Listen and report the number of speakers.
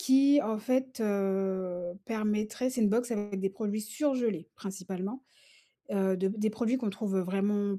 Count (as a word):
one